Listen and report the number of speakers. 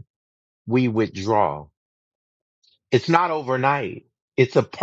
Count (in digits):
1